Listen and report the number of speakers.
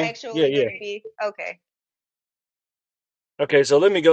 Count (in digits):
2